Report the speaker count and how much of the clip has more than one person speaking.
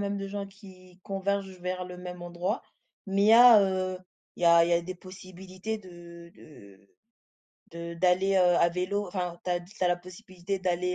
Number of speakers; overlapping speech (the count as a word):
one, no overlap